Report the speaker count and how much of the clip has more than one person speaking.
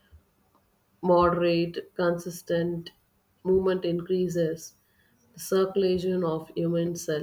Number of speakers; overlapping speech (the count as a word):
one, no overlap